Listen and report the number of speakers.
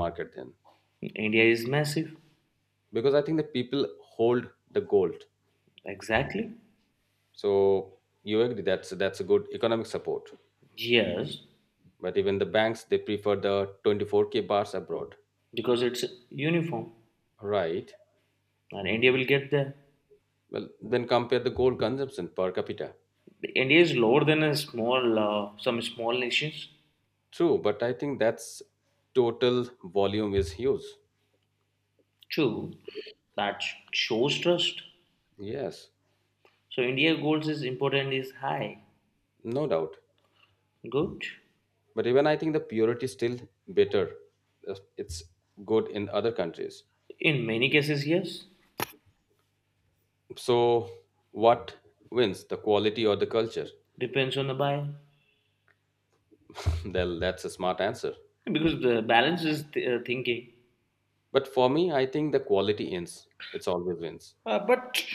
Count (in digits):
2